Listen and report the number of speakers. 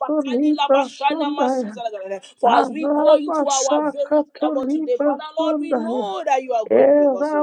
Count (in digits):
2